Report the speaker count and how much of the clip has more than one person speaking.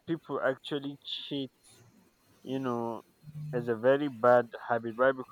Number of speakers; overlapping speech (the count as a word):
one, no overlap